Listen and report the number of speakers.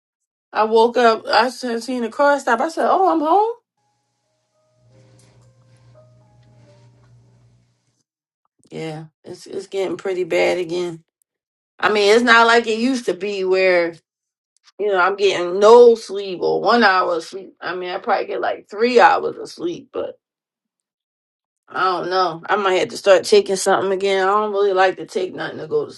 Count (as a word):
one